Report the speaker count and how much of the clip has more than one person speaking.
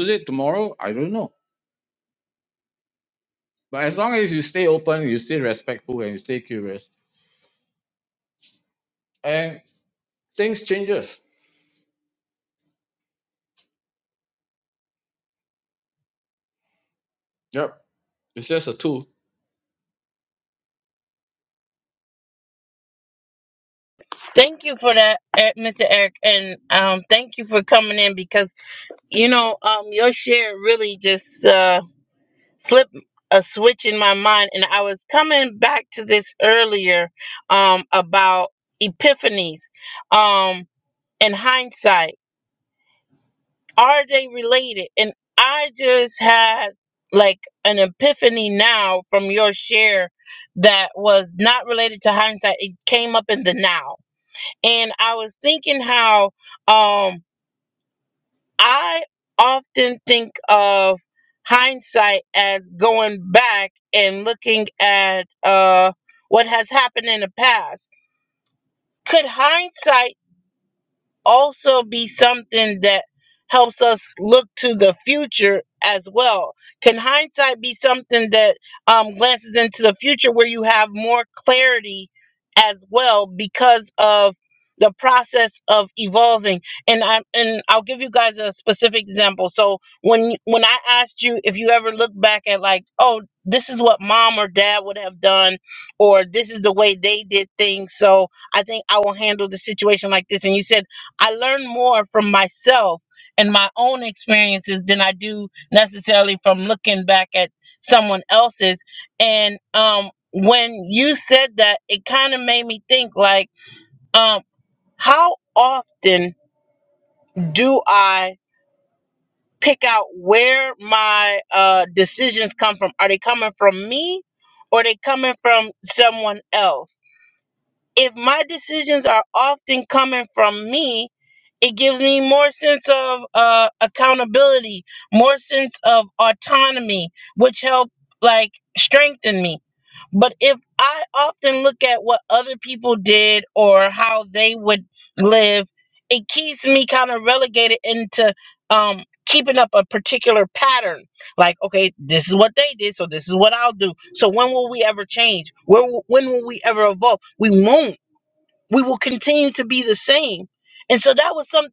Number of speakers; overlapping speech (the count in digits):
2, no overlap